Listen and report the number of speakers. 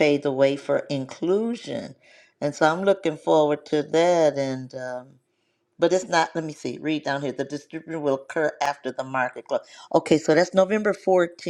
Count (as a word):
one